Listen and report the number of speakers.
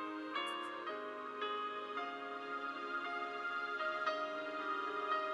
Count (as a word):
zero